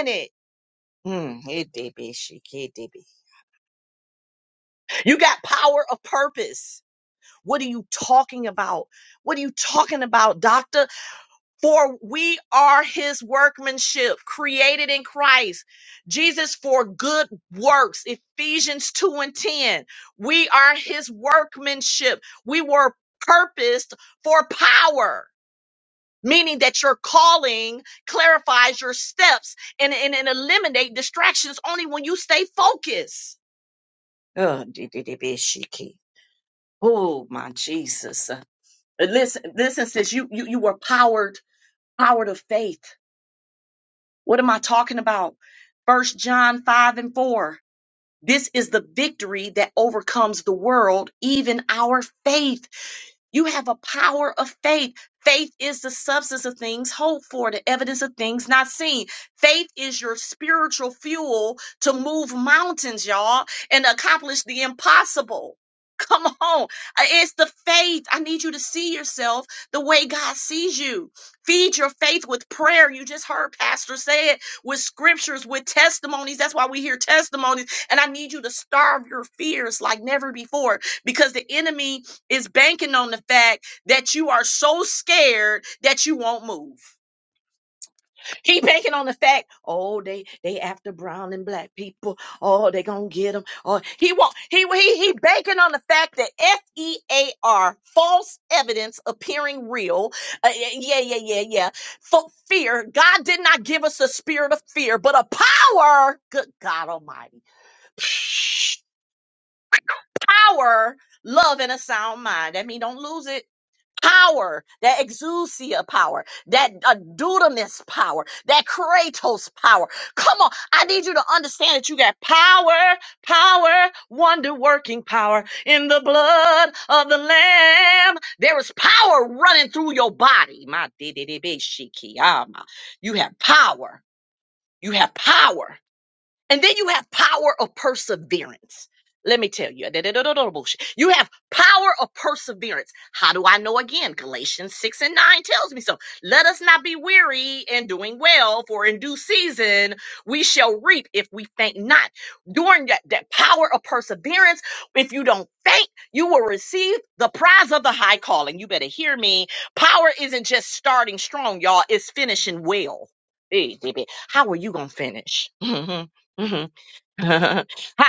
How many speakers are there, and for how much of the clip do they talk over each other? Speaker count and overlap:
one, no overlap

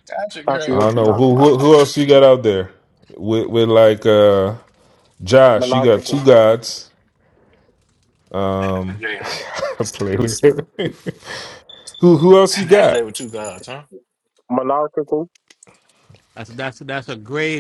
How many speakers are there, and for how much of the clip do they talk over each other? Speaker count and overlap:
four, about 11%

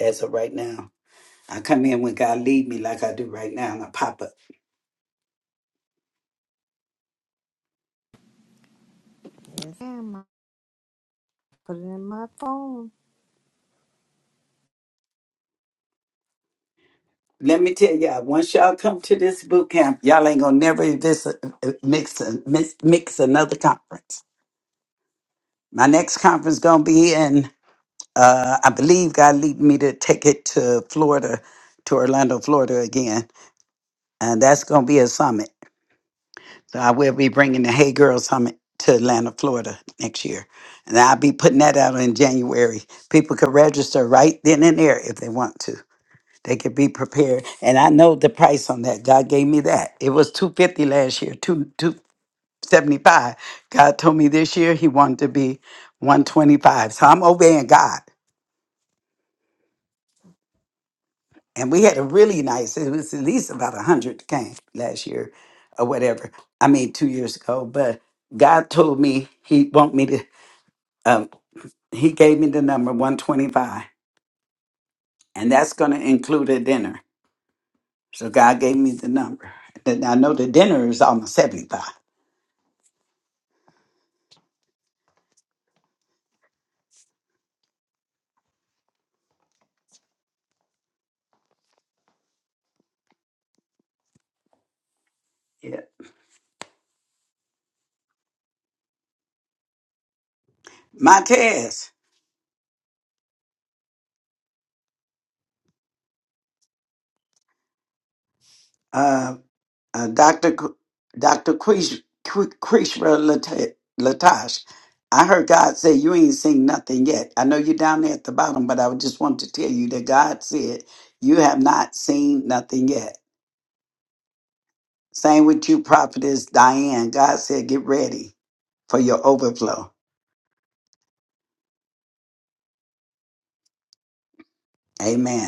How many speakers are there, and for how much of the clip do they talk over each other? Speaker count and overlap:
two, no overlap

